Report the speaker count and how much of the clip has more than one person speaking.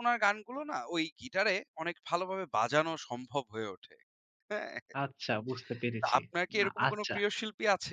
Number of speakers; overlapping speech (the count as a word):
two, about 11%